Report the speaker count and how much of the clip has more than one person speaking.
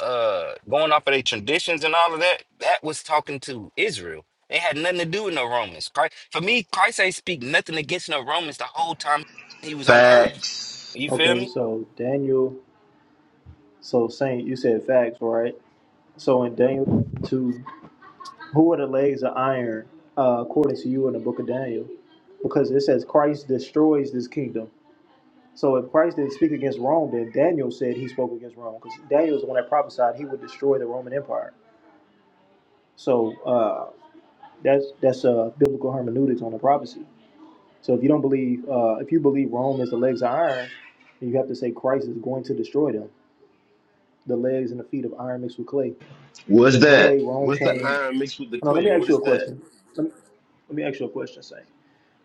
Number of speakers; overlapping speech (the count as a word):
three, about 6%